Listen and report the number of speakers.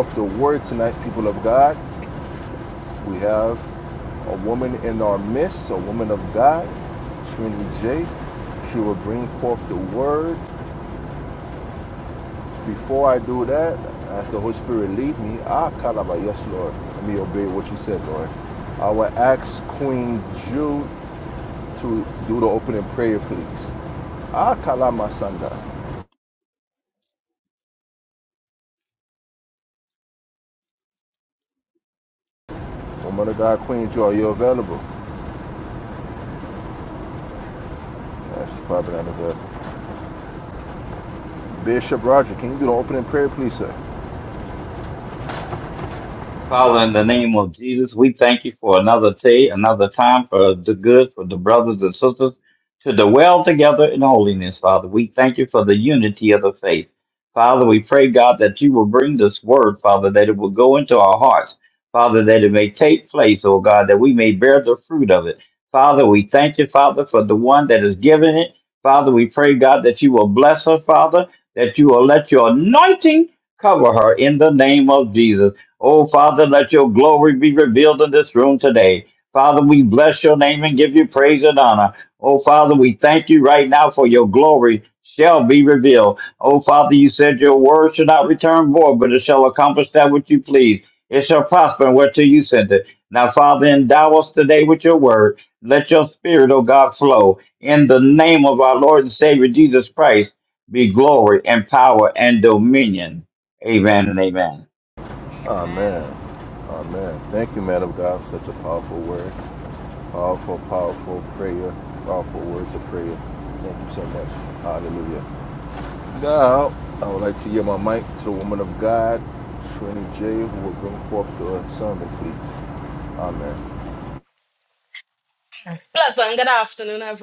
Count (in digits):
3